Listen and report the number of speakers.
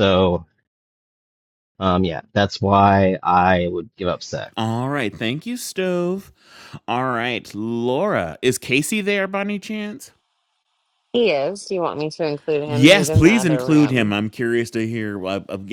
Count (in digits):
3